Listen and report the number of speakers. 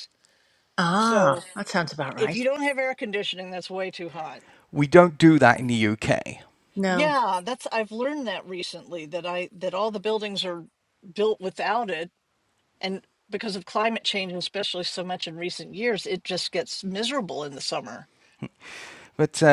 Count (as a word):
three